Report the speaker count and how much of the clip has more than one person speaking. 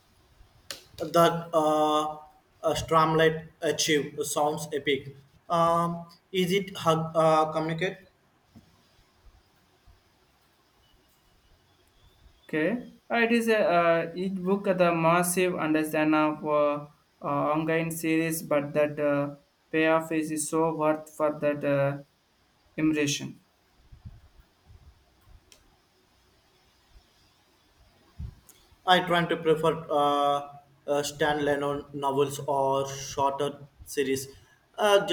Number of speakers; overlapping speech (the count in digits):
2, no overlap